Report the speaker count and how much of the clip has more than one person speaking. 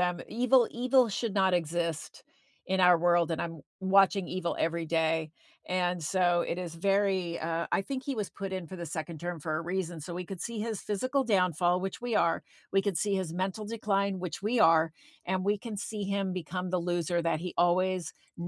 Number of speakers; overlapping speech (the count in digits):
1, no overlap